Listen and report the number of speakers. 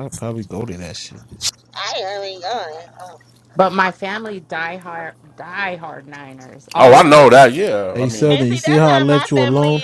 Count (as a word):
four